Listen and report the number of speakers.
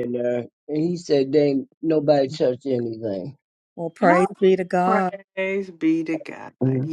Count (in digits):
3